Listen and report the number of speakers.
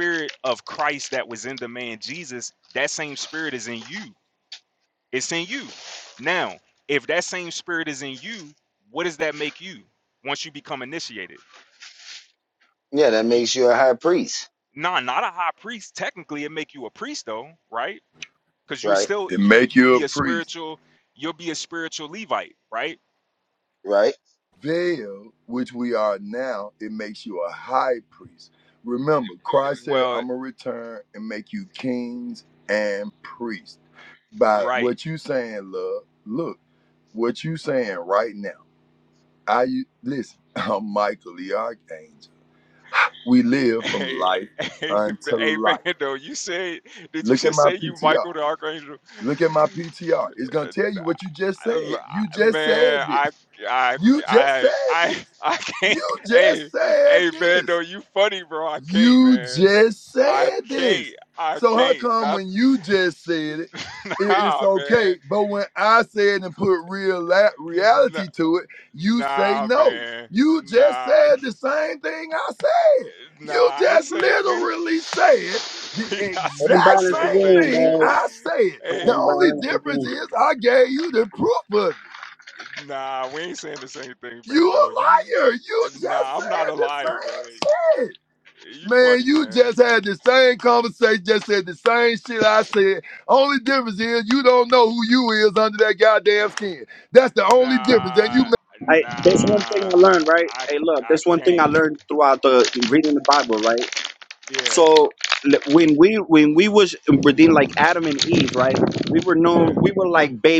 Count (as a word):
four